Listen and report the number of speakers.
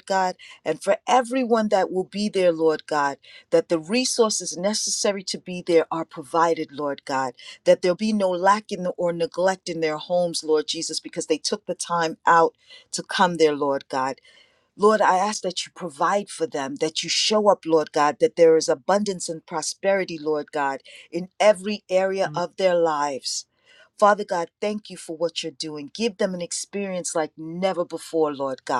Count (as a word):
one